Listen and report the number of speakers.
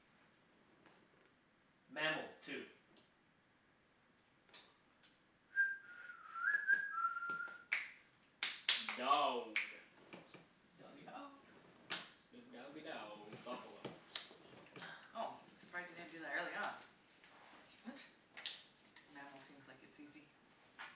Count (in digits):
3